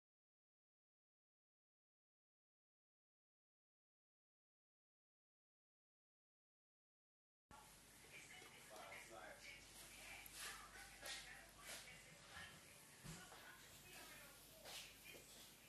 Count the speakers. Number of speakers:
0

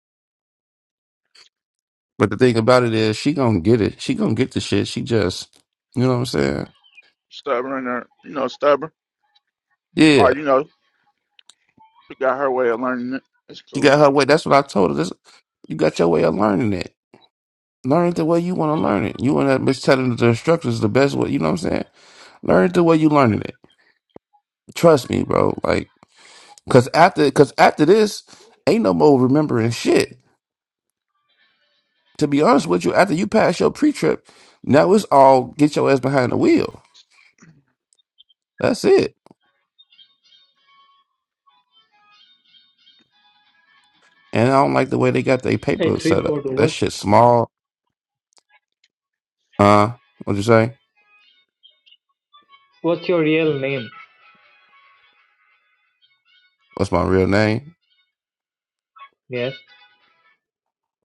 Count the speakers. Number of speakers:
3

